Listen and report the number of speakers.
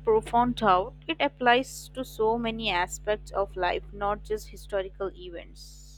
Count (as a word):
one